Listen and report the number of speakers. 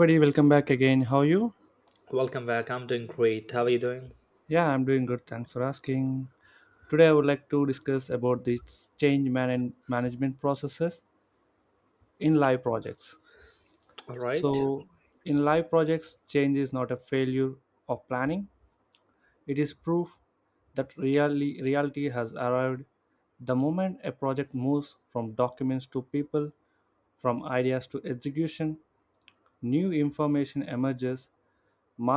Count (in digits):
2